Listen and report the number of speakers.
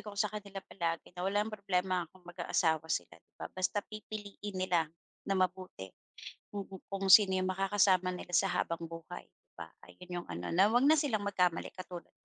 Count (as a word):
one